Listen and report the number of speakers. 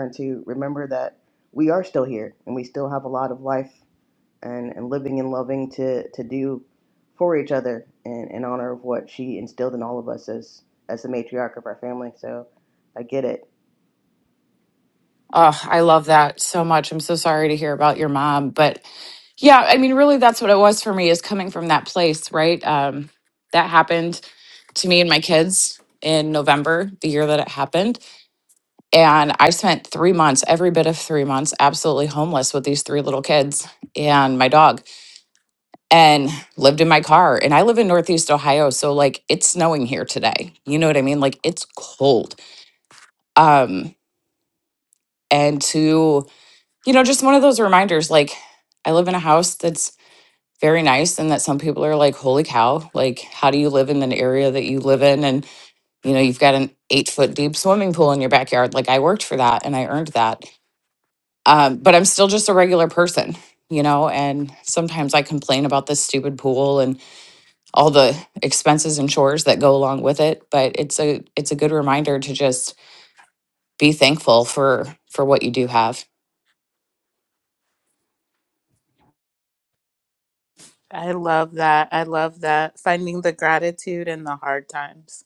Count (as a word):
three